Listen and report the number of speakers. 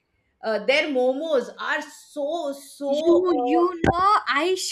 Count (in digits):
2